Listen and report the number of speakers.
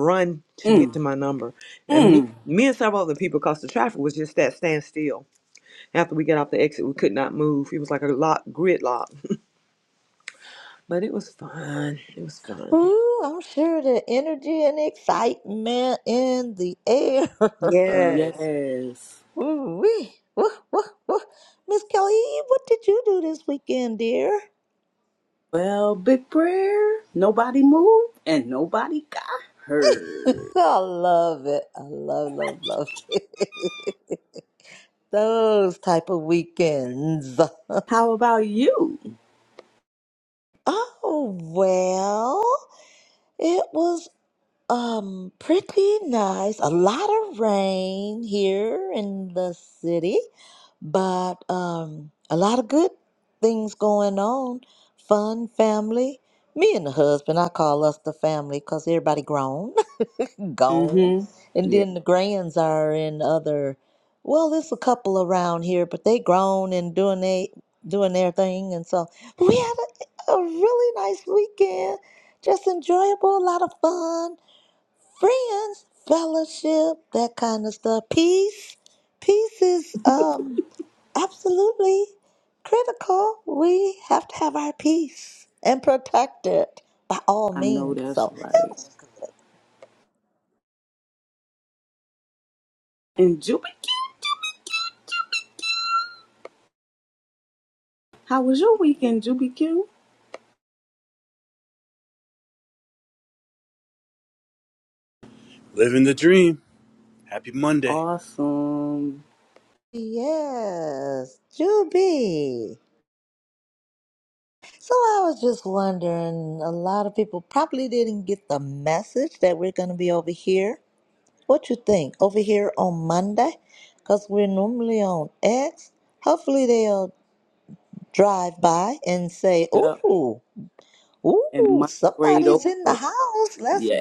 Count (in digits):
4